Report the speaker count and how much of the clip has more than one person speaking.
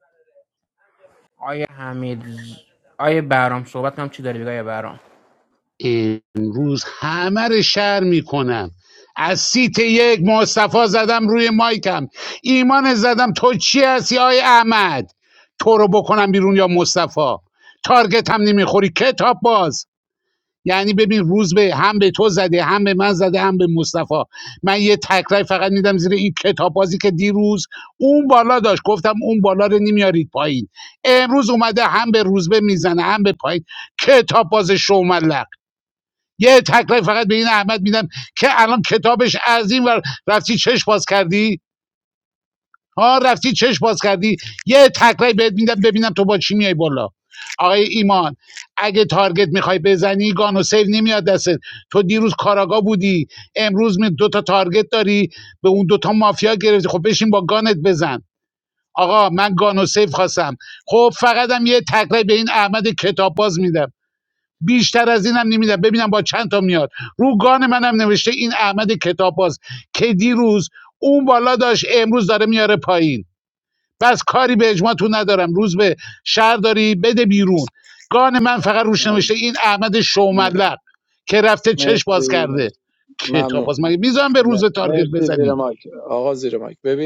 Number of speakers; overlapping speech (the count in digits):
3, about 3%